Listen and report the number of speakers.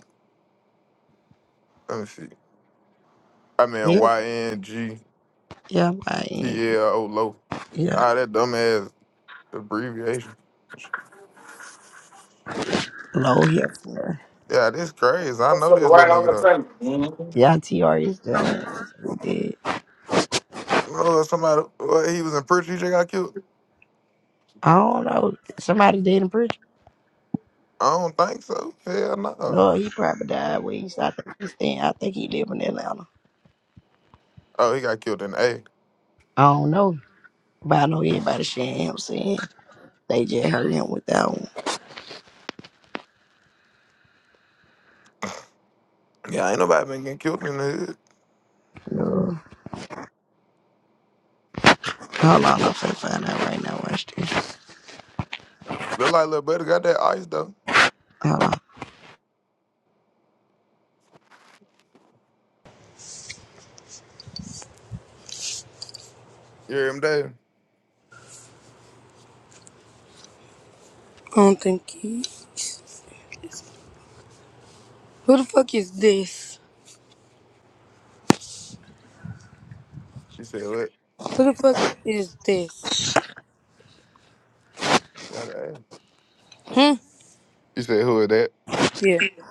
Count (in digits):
4